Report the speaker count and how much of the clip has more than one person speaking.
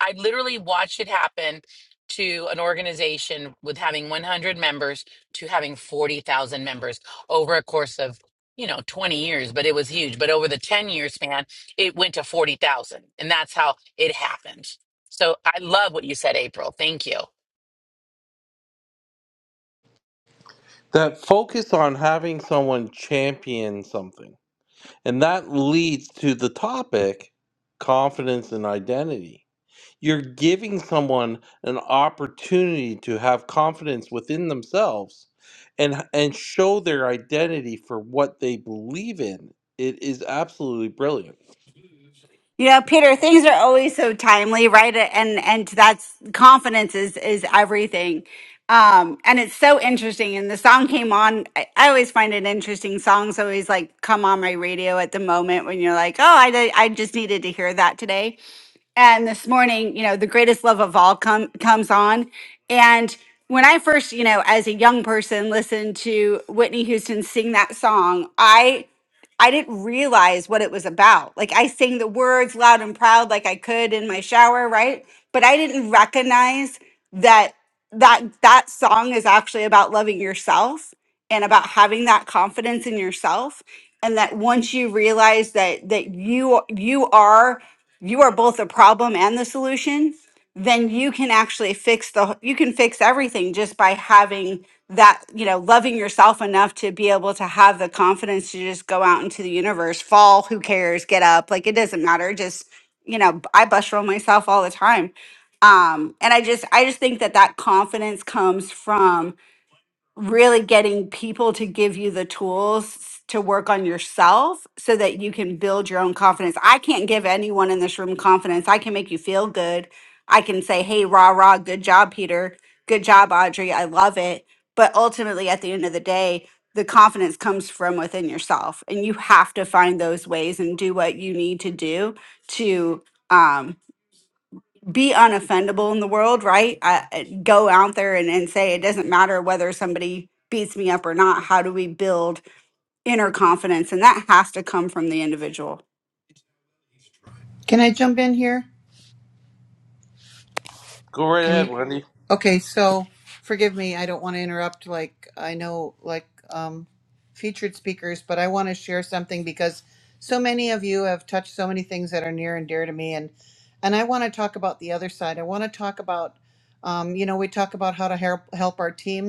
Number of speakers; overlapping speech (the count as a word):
four, under 1%